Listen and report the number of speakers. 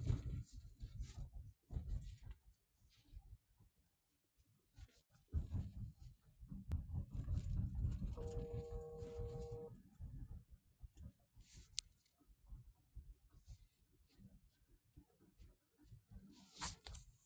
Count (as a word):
zero